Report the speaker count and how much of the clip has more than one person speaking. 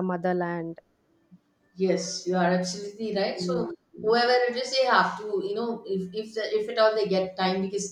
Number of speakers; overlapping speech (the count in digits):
2, about 5%